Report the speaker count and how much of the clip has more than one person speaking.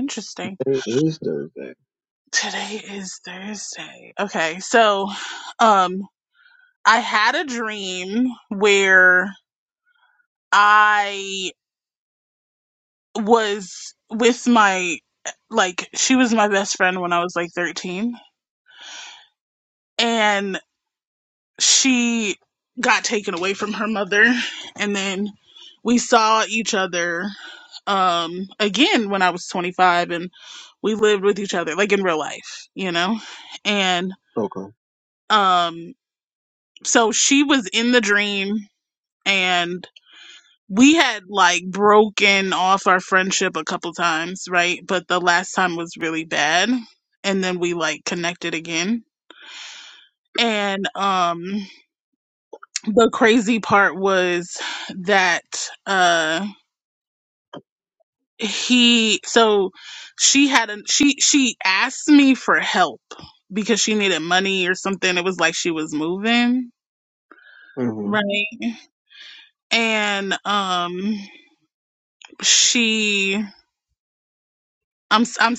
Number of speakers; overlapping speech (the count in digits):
2, under 1%